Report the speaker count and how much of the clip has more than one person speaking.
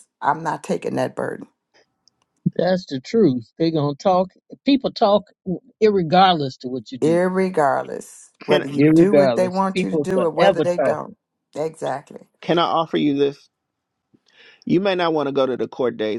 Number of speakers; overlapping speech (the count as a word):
three, about 17%